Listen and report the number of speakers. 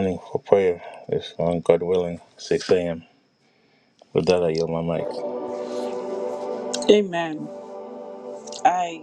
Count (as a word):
two